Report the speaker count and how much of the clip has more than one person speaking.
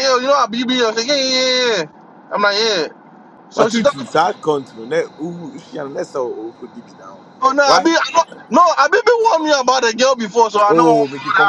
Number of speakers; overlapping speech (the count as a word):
two, about 14%